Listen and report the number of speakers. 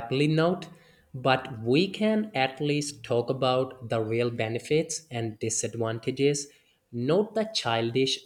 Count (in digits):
1